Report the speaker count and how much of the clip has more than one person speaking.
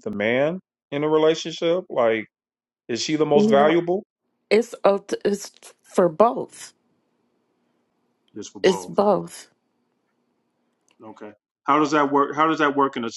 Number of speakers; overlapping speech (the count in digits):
2, about 5%